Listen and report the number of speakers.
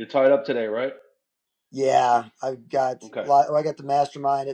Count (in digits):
2